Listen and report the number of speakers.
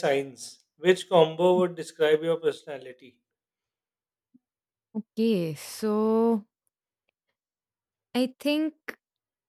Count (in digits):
2